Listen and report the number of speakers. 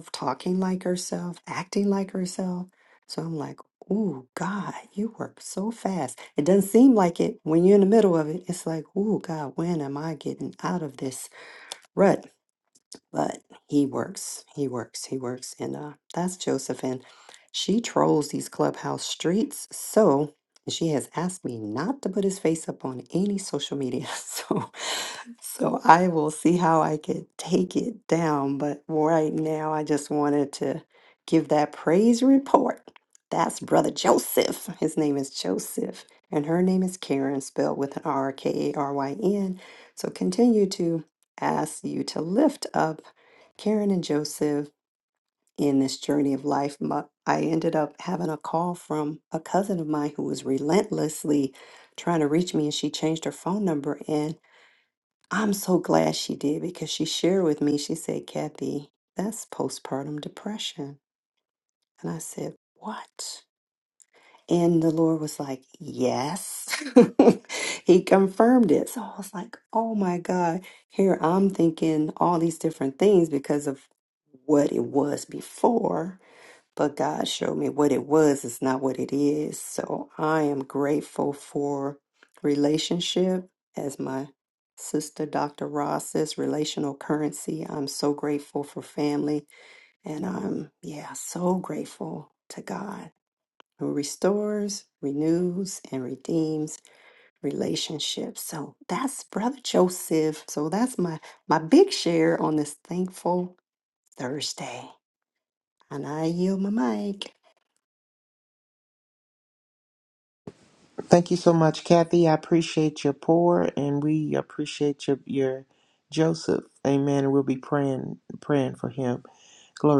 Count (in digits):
2